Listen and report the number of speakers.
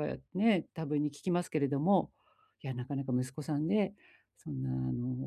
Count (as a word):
one